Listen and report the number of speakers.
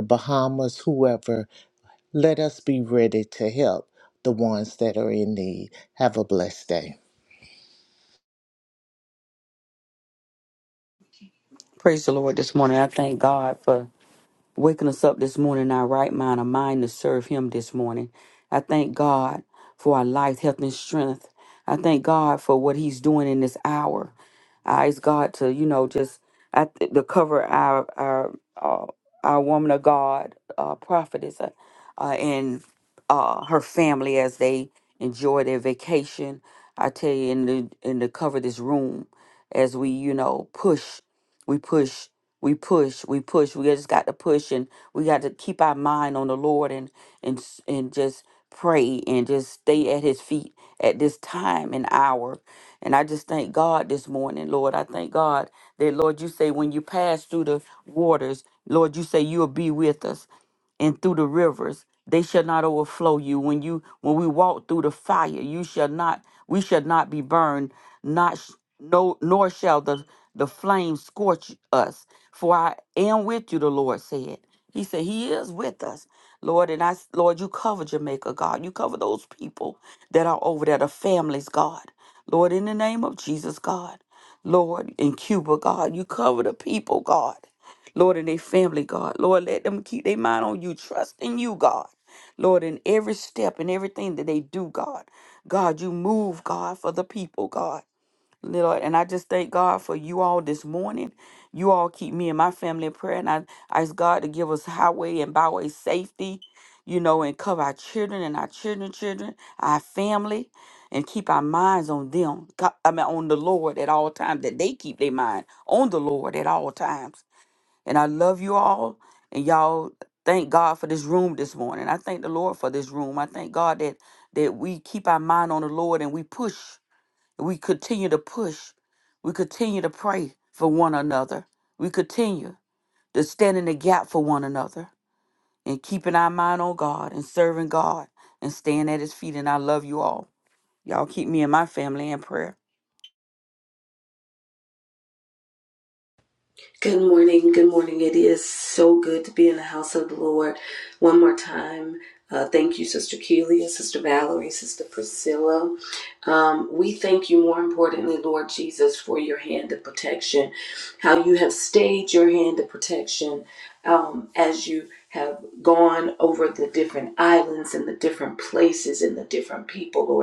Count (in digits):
3